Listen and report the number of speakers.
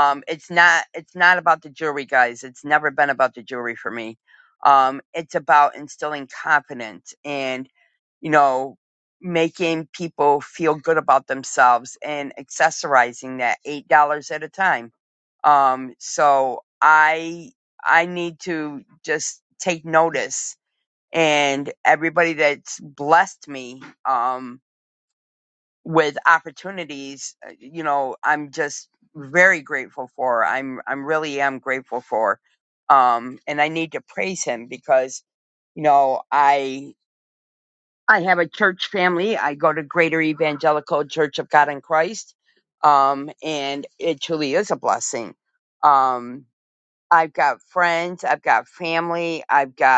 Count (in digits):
1